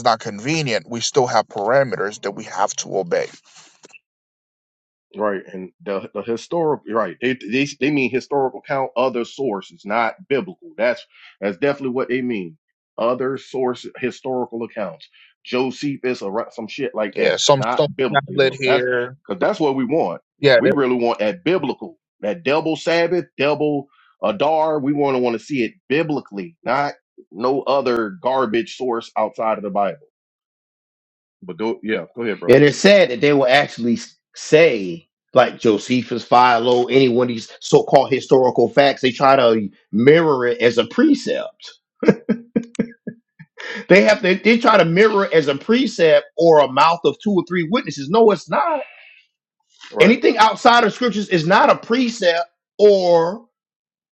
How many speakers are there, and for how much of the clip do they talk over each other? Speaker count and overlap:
three, about 4%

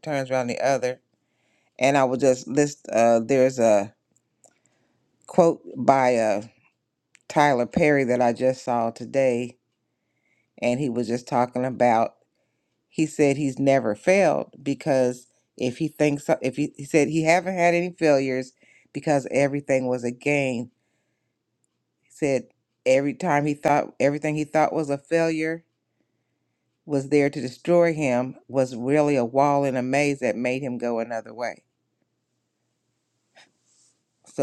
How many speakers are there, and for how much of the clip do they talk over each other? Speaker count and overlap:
one, no overlap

